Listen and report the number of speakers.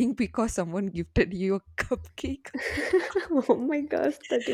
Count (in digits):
2